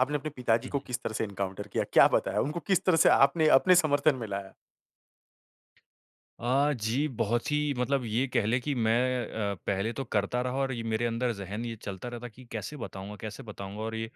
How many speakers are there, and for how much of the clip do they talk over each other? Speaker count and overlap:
2, about 1%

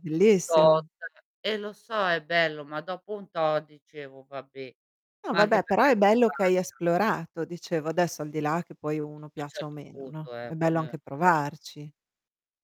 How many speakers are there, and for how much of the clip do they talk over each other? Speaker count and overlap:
2, about 23%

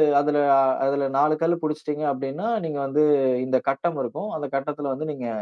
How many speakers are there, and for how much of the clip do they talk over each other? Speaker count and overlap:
1, no overlap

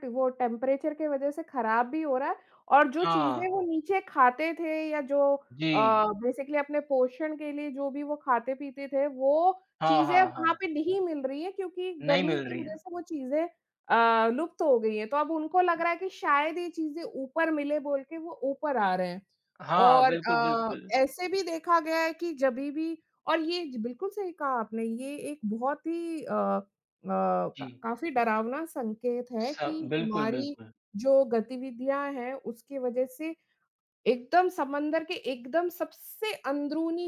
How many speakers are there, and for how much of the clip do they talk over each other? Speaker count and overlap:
2, about 11%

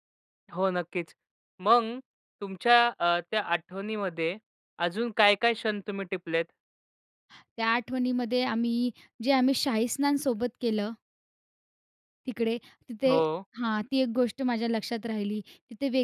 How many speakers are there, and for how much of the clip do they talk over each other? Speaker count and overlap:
2, about 1%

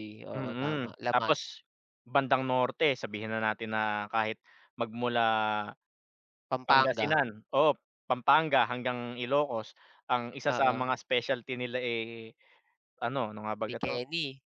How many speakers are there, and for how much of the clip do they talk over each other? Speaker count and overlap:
2, about 15%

